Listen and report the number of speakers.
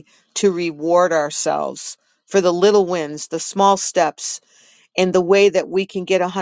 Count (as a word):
one